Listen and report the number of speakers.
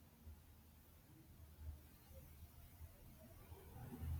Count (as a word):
zero